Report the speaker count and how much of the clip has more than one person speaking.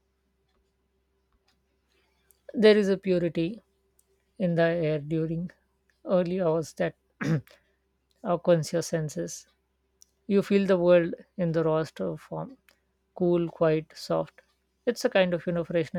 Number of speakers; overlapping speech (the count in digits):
1, no overlap